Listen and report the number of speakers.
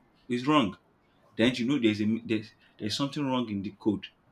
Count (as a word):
one